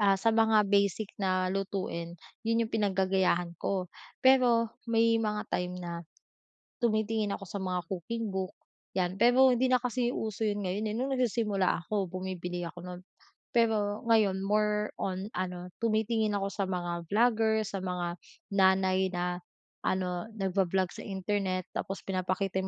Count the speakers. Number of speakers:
1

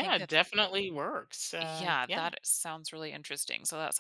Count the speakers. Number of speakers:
2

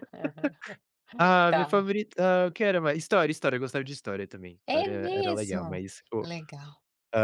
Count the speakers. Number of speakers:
2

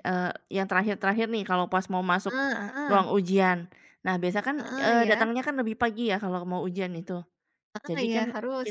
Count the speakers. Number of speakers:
2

